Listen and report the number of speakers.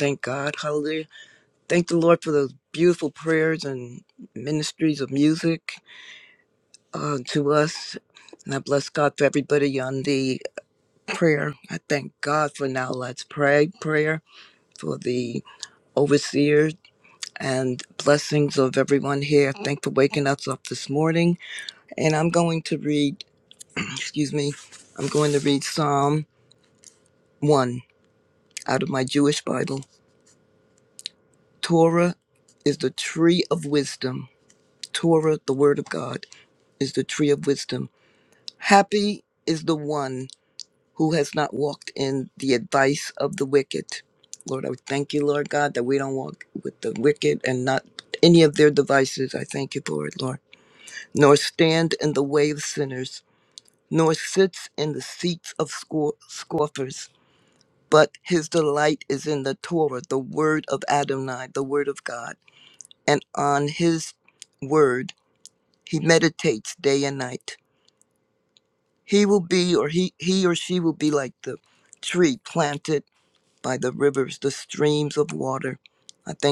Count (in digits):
1